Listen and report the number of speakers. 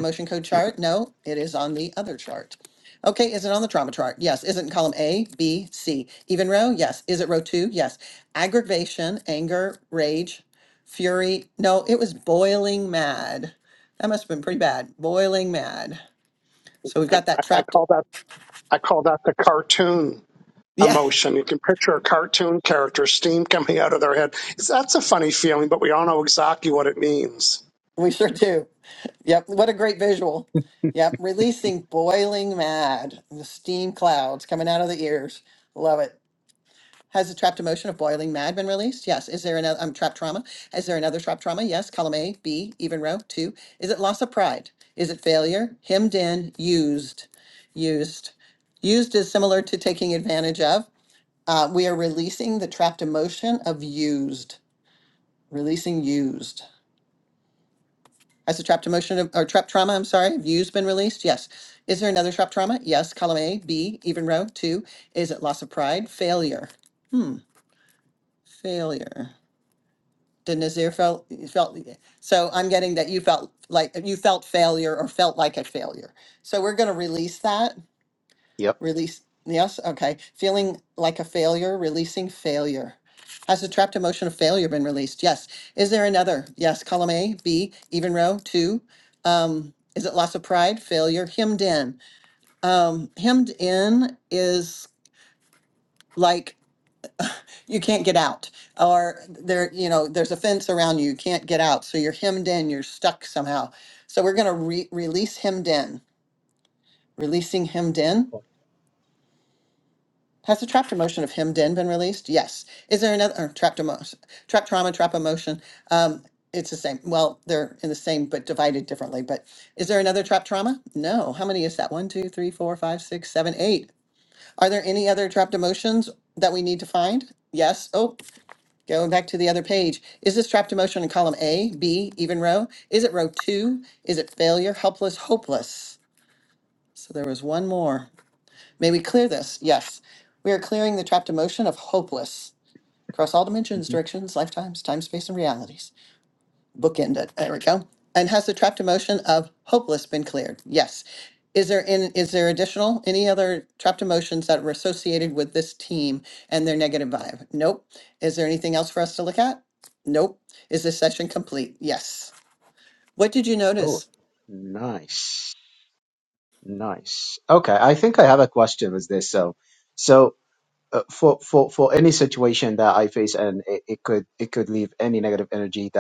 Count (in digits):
3